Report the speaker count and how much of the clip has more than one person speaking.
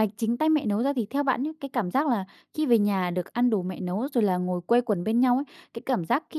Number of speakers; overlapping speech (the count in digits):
1, no overlap